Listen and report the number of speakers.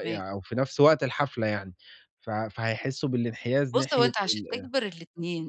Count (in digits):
2